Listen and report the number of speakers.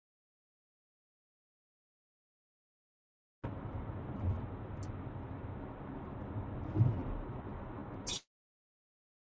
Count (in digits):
0